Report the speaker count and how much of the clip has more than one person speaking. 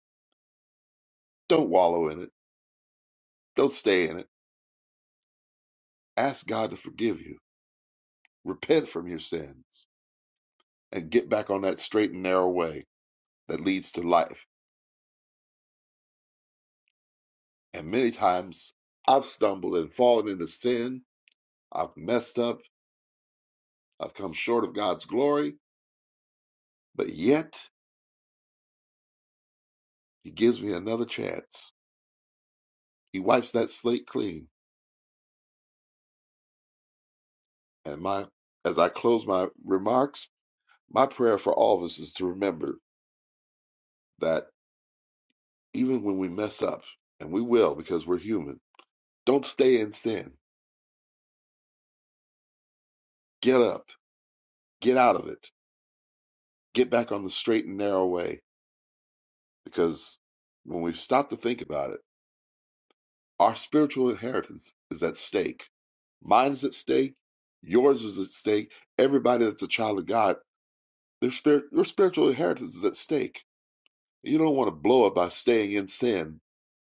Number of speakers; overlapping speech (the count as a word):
one, no overlap